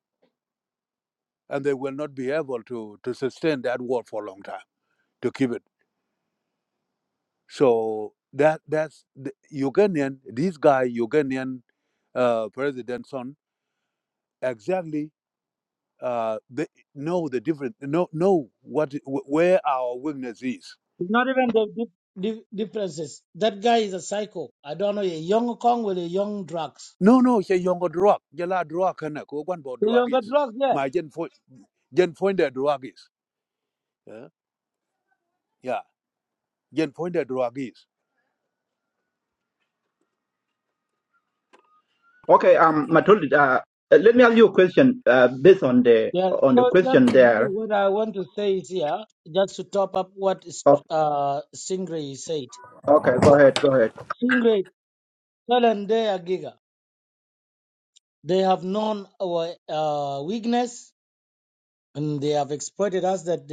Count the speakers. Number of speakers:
3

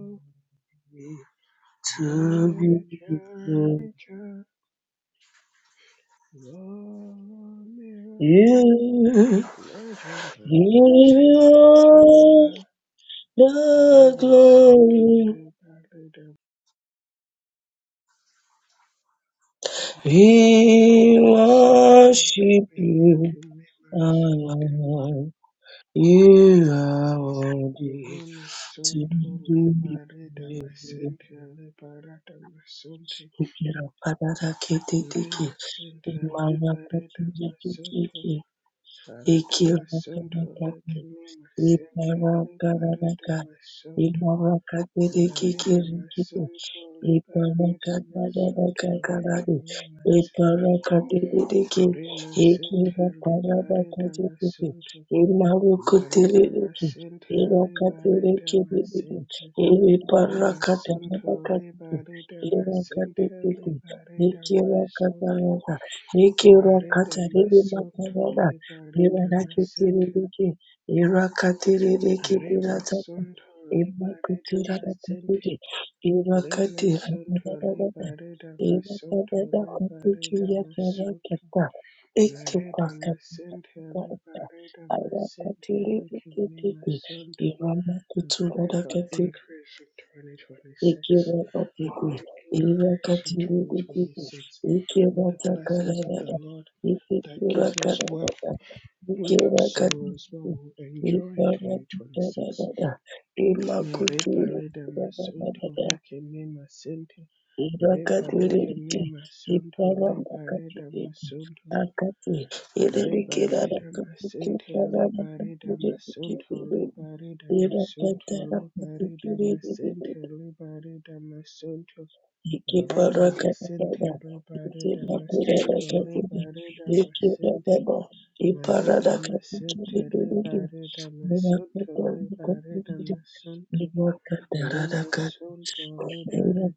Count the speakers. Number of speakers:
2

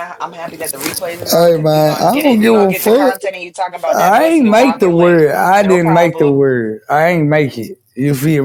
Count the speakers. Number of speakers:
2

